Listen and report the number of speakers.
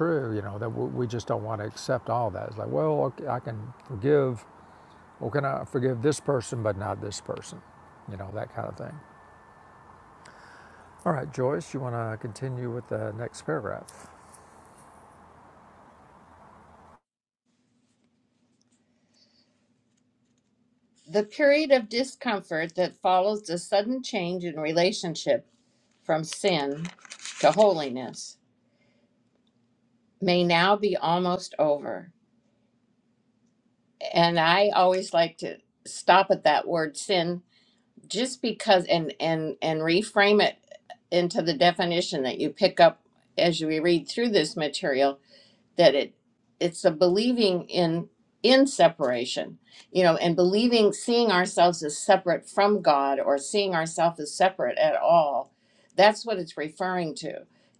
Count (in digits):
2